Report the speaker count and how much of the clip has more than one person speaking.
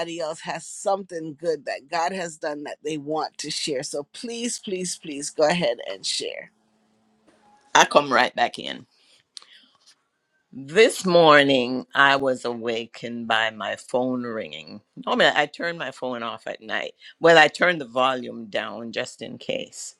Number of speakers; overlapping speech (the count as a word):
two, no overlap